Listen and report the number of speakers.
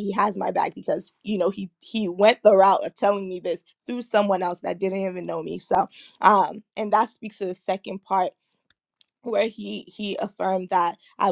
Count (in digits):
1